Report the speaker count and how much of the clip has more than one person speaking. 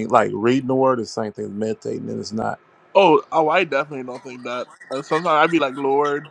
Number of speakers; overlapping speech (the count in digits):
2, no overlap